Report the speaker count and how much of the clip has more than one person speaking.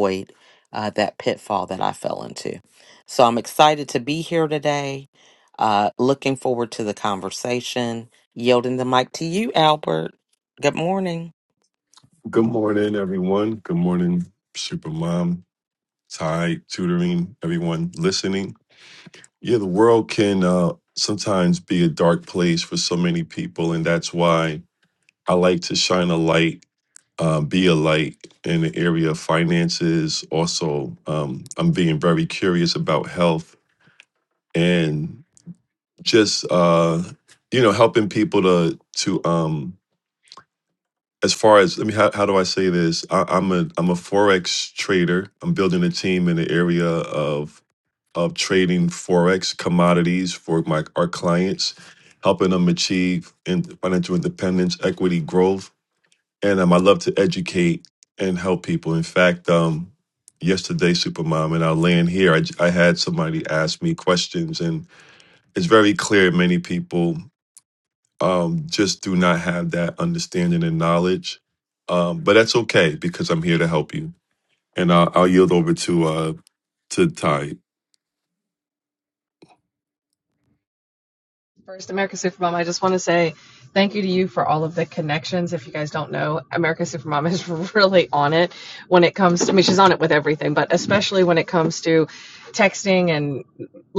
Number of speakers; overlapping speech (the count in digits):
3, no overlap